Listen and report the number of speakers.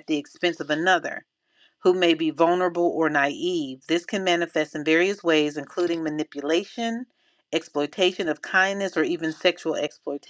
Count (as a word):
one